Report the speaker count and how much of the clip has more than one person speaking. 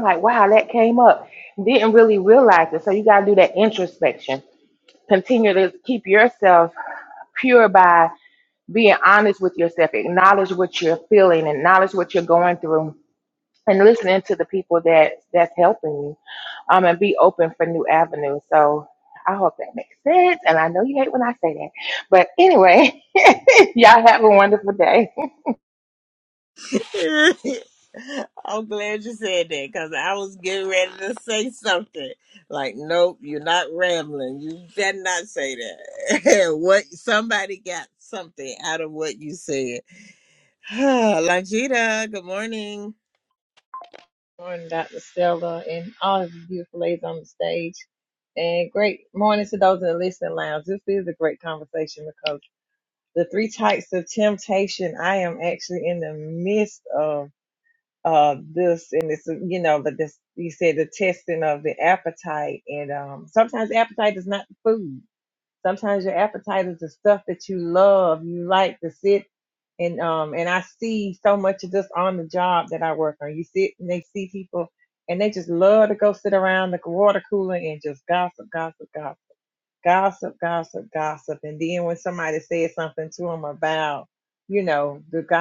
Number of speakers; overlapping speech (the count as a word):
three, no overlap